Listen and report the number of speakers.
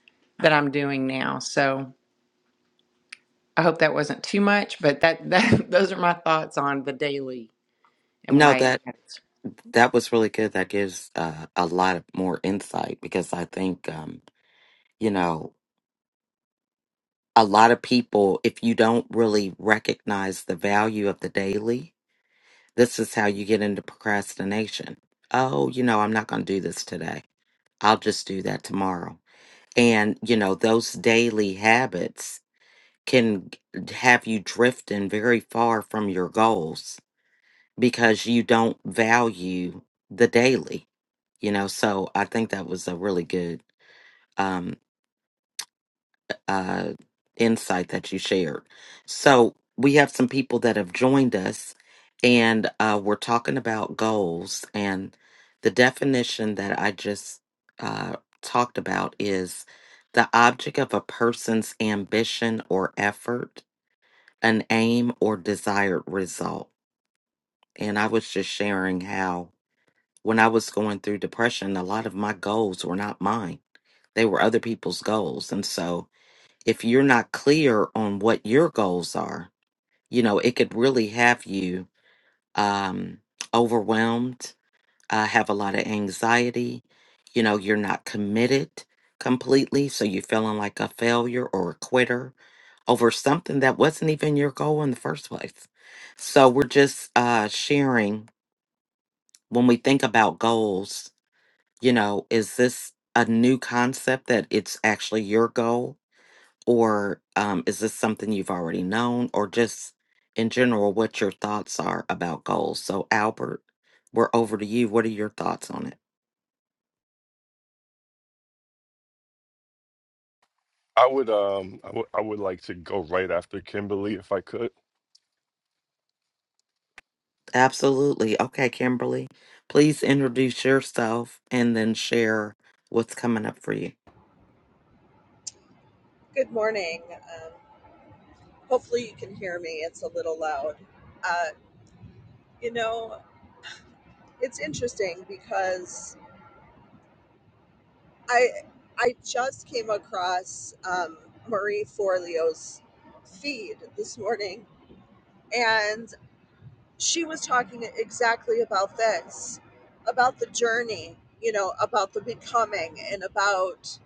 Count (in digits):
4